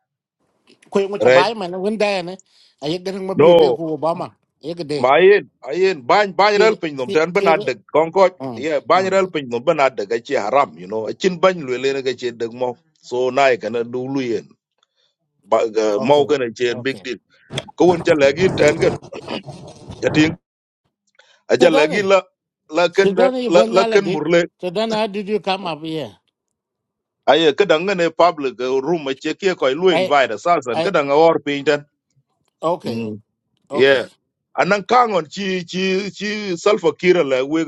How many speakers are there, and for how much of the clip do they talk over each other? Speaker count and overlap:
2, about 13%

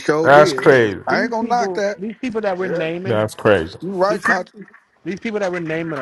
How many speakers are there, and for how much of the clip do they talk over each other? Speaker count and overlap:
3, about 35%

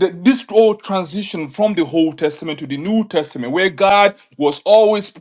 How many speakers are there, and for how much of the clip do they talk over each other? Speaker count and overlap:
1, no overlap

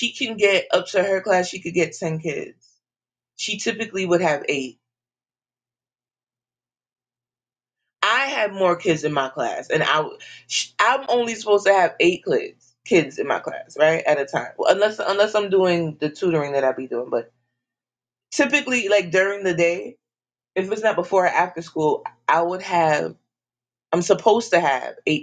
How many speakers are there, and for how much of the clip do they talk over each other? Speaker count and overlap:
1, no overlap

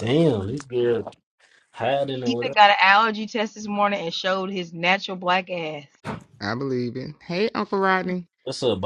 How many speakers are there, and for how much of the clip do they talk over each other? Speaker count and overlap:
3, about 3%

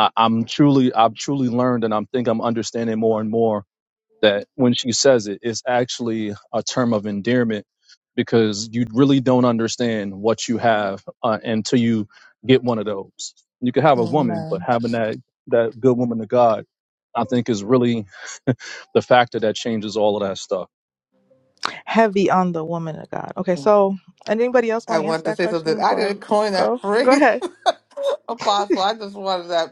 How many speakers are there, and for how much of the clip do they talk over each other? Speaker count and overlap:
3, about 9%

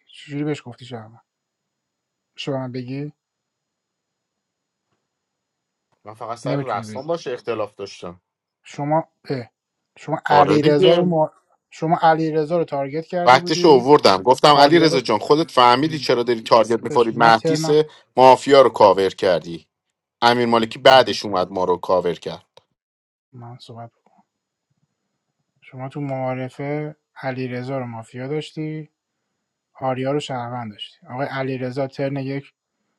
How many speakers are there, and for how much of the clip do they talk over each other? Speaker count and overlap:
2, about 10%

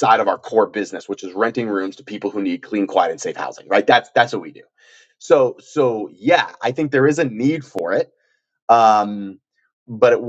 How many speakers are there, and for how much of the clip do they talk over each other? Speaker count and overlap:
1, no overlap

